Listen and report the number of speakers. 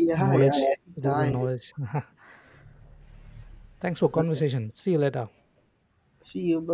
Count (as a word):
two